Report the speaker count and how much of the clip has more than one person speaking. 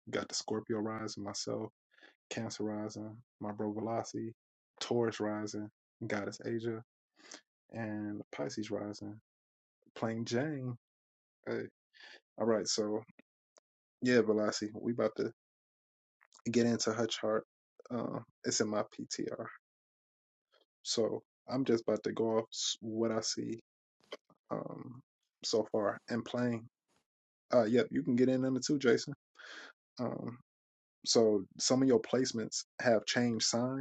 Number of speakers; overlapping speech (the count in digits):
1, no overlap